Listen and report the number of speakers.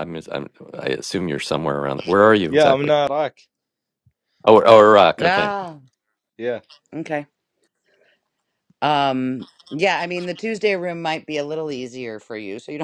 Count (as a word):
three